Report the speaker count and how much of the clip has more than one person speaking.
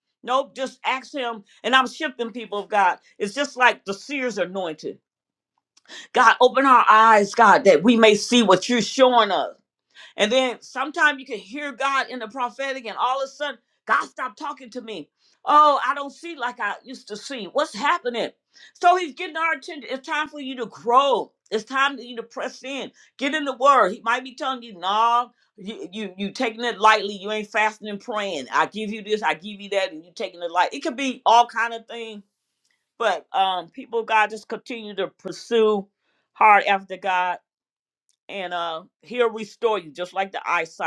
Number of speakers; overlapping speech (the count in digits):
1, no overlap